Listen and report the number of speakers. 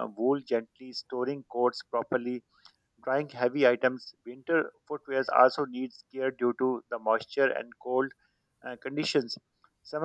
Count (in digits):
1